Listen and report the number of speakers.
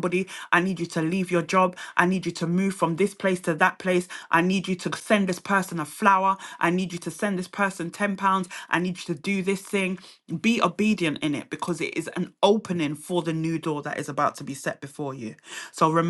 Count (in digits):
1